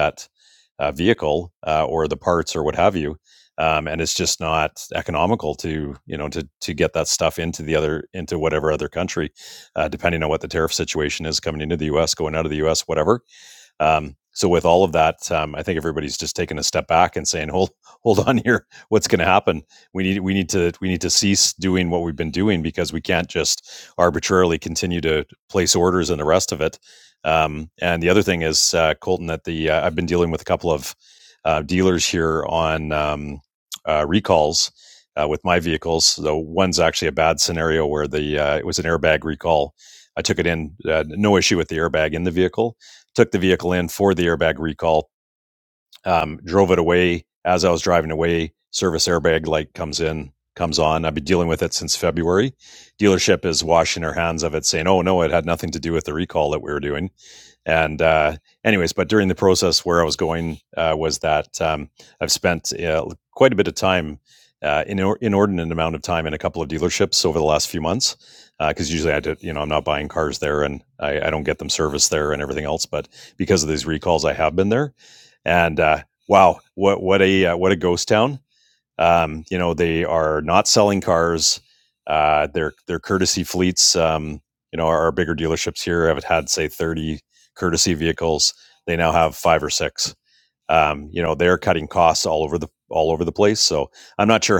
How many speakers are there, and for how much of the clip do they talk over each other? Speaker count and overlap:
1, no overlap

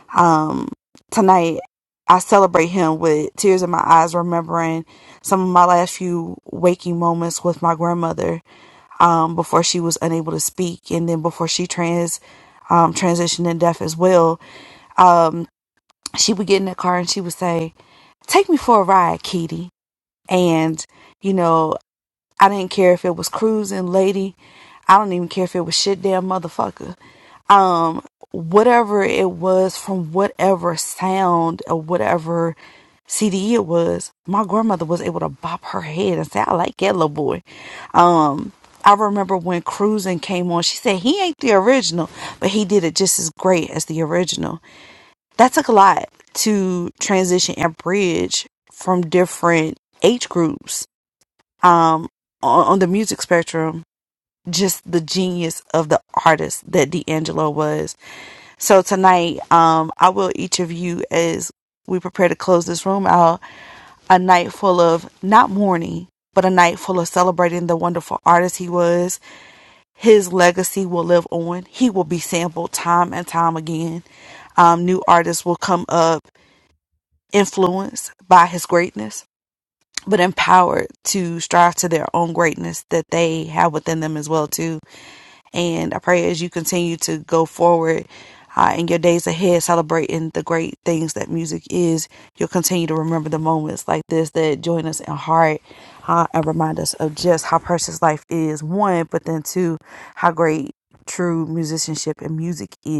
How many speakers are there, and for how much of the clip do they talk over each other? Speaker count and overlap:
1, no overlap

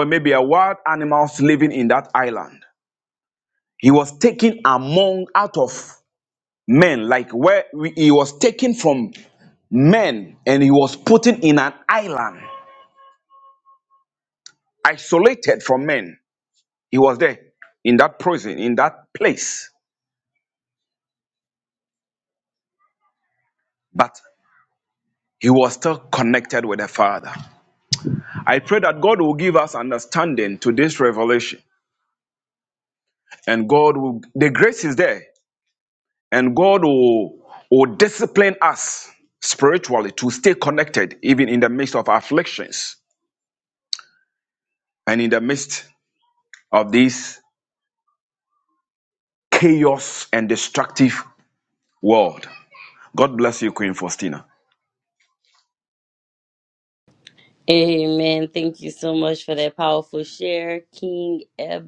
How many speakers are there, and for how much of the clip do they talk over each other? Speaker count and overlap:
2, no overlap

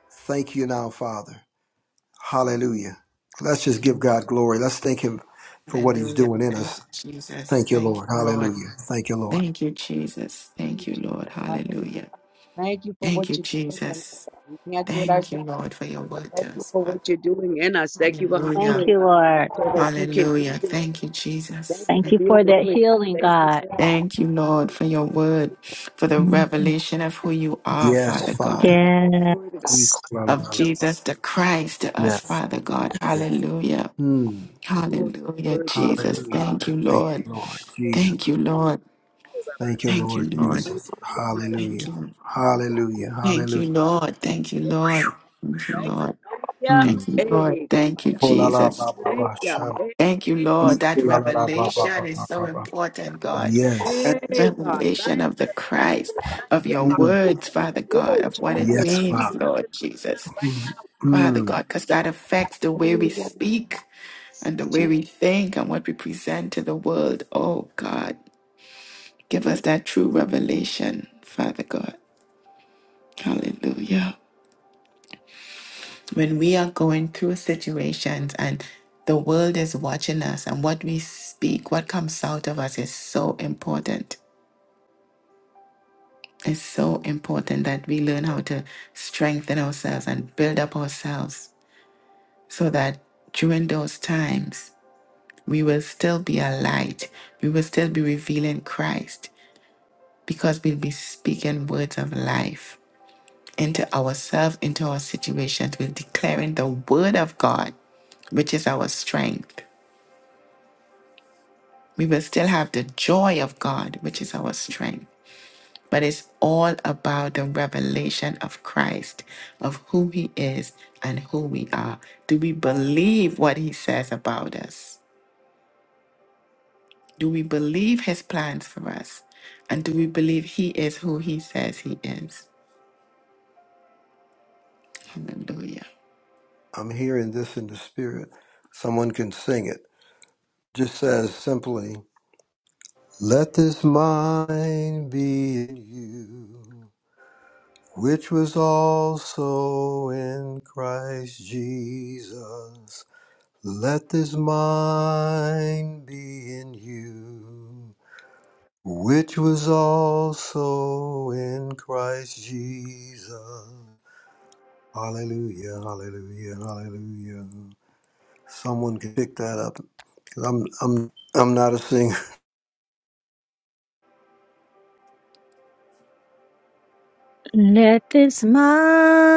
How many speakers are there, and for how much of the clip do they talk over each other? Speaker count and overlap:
4, about 16%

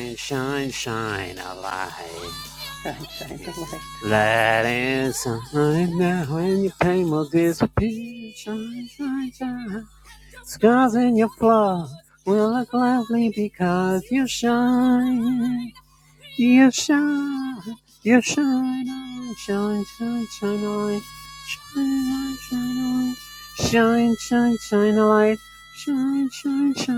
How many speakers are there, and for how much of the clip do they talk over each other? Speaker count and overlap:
2, under 1%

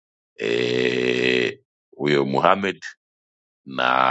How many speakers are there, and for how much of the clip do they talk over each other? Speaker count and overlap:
1, no overlap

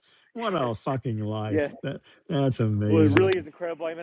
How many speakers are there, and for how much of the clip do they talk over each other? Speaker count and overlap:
2, about 17%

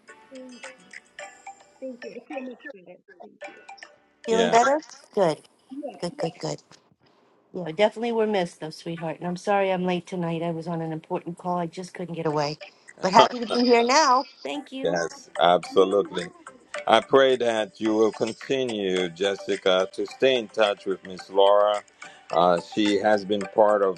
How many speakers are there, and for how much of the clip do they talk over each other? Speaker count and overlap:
3, about 4%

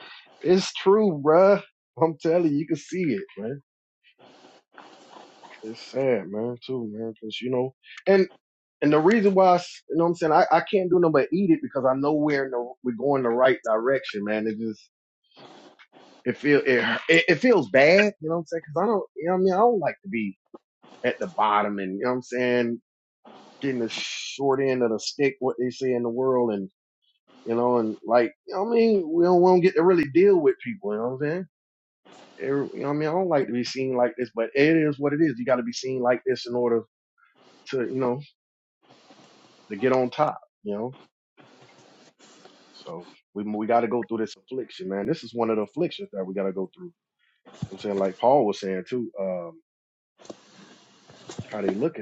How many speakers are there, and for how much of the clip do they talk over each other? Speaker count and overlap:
1, no overlap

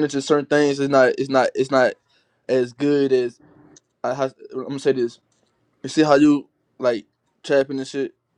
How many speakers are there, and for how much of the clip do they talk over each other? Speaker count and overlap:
1, no overlap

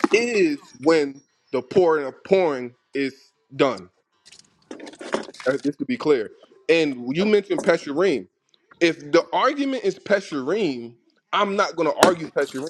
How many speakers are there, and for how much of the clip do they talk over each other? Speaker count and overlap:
1, no overlap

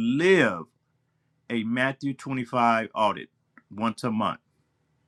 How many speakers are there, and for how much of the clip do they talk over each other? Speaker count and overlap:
1, no overlap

